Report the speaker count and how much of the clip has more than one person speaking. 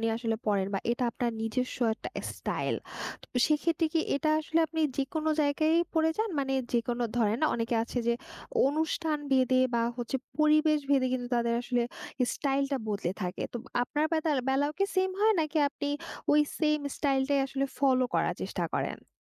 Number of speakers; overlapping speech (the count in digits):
1, no overlap